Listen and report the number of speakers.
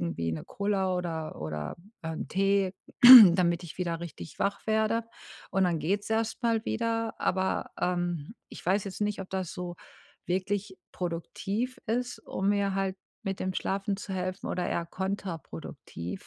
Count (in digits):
1